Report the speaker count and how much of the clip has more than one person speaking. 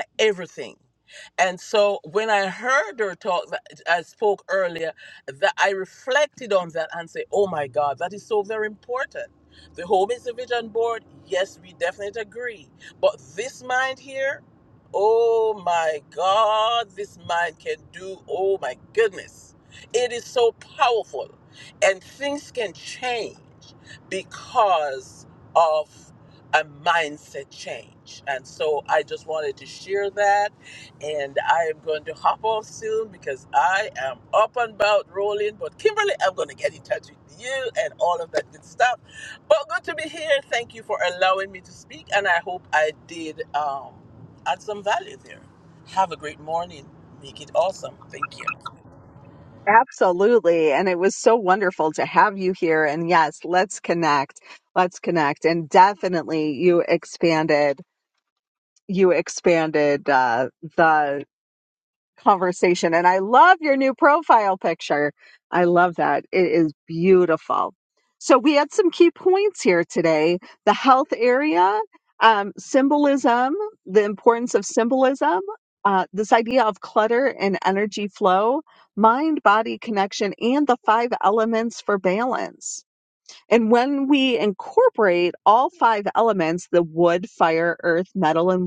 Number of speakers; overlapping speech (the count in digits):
2, no overlap